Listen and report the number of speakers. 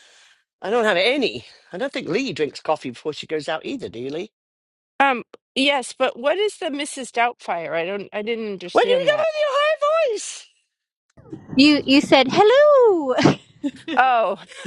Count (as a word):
three